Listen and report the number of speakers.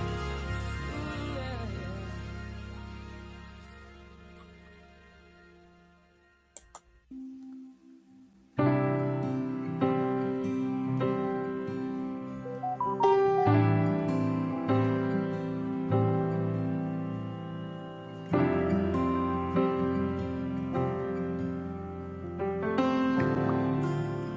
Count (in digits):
0